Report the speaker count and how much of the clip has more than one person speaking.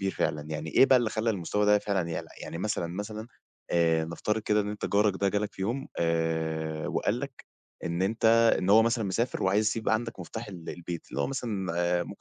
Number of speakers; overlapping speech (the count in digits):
1, no overlap